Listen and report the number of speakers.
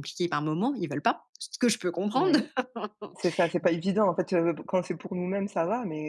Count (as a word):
two